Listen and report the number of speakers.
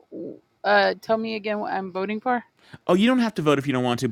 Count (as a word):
two